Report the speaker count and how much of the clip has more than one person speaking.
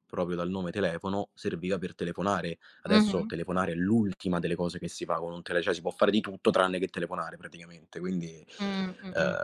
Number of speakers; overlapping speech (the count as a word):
two, about 8%